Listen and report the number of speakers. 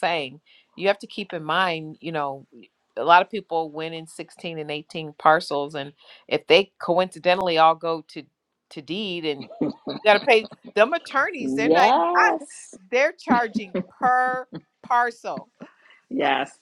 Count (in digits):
2